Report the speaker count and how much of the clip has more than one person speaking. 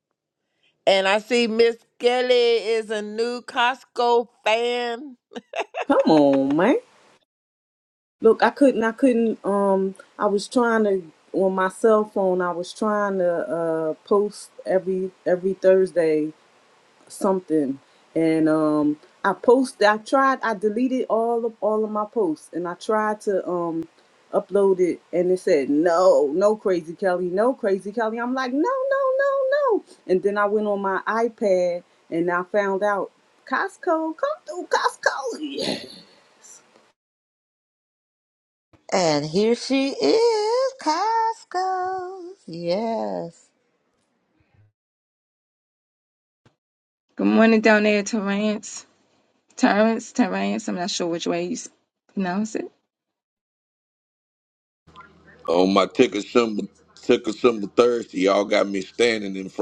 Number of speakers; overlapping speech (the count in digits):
5, no overlap